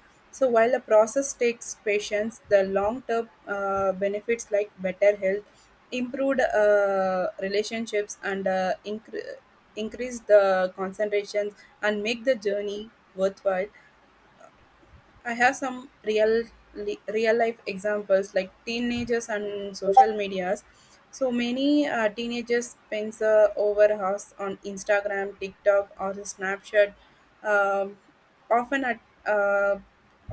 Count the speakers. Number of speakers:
1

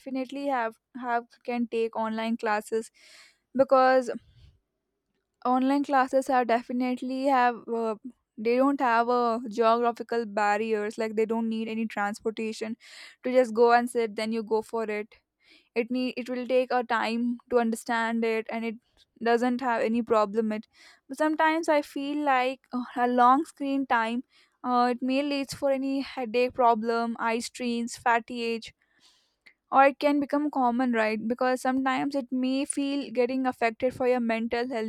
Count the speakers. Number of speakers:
1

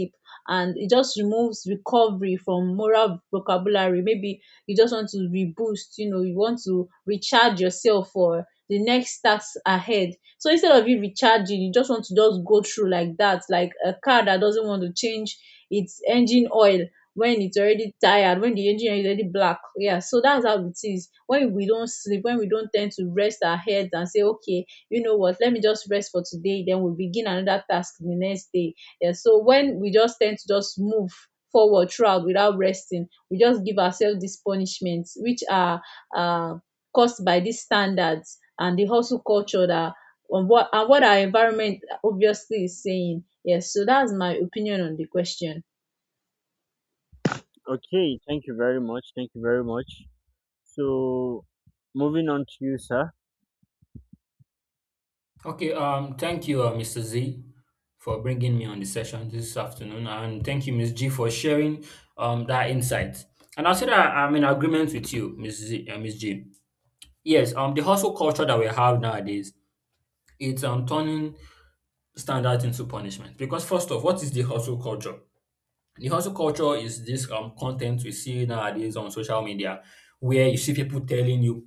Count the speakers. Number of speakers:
3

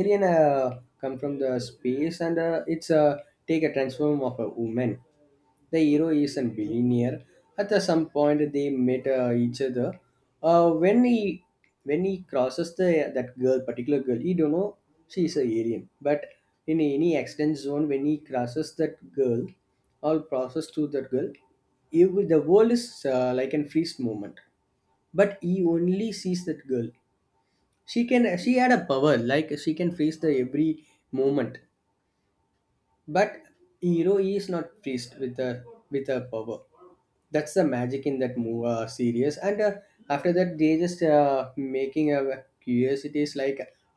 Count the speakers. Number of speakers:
1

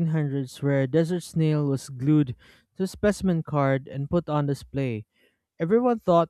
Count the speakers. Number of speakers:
1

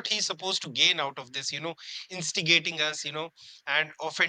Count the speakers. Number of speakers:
1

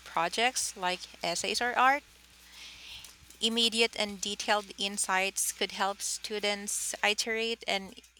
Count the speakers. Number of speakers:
1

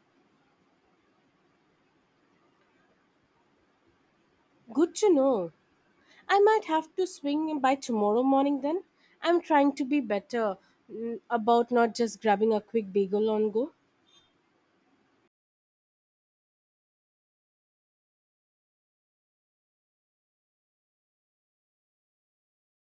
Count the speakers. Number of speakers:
1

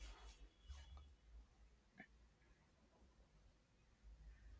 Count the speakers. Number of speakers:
0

